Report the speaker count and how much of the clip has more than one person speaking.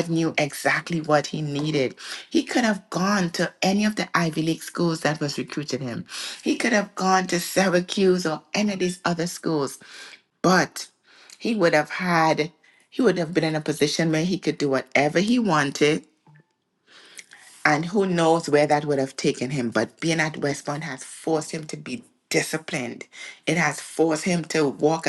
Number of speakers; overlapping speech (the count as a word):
one, no overlap